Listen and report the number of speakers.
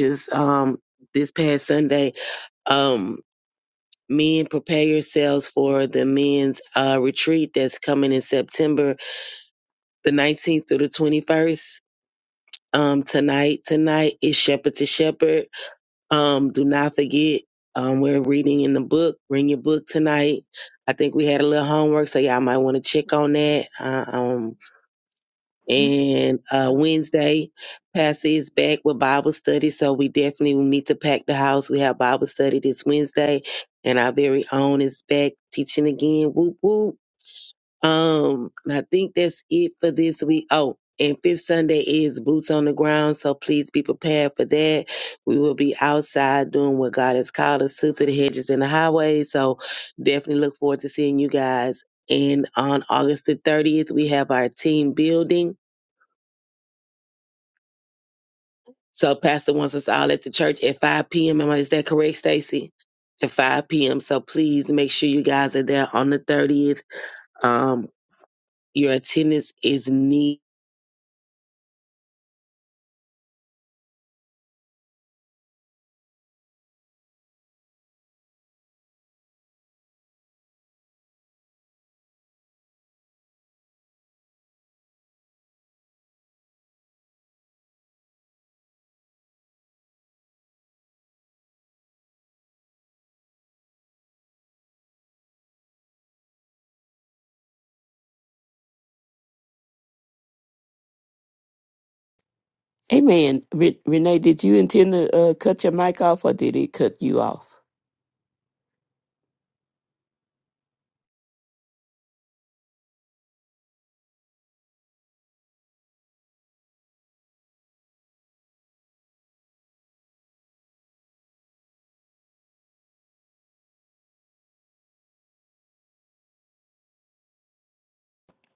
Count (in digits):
2